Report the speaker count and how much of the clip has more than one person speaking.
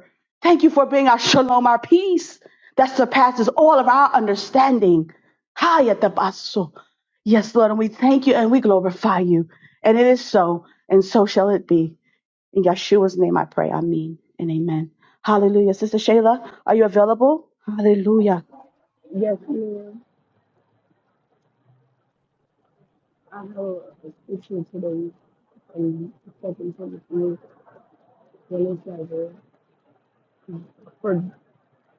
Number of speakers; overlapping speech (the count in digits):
2, no overlap